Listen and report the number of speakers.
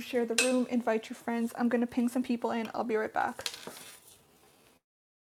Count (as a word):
one